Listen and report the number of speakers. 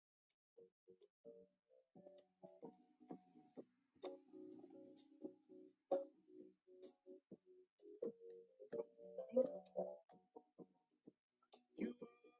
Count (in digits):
0